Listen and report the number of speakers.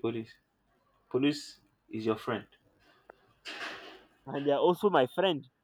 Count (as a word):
two